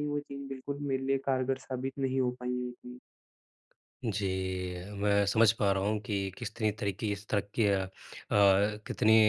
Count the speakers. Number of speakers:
2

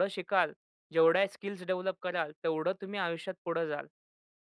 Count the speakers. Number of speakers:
1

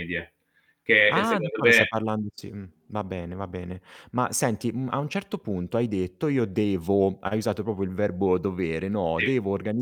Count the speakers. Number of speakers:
2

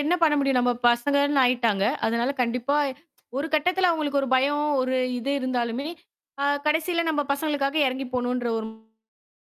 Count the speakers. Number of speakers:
1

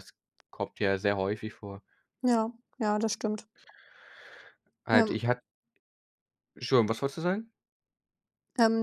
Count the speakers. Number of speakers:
2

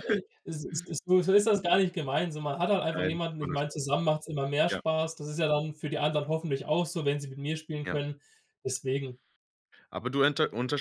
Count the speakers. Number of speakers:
2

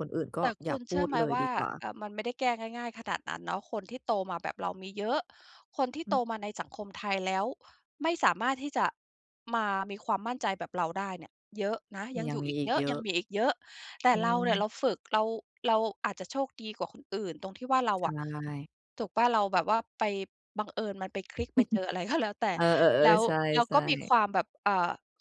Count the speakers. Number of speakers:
2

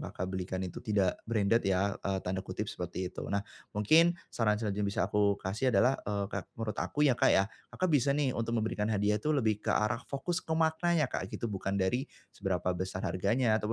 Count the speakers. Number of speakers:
1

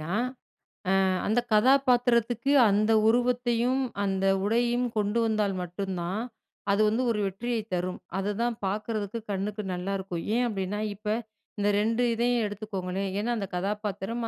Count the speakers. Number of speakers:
1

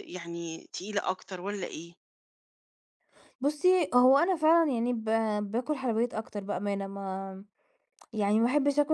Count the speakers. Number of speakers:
2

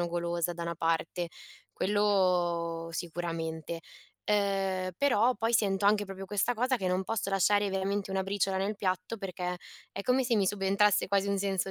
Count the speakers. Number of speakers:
1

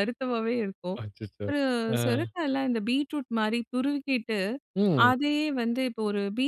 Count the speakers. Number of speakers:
2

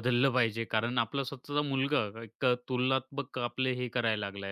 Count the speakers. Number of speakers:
1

